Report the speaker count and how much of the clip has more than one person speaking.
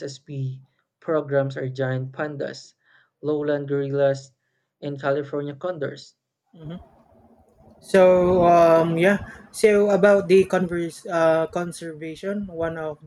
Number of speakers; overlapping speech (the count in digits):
2, no overlap